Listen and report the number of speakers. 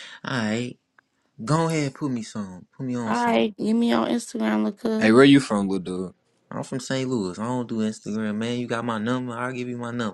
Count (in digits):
3